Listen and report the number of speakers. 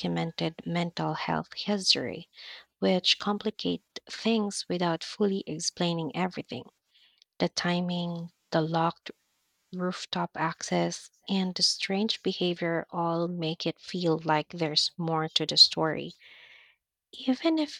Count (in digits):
1